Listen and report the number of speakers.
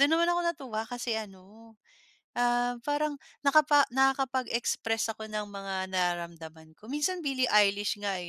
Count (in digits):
1